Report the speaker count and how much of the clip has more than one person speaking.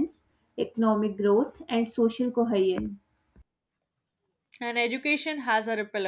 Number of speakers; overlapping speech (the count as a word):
two, no overlap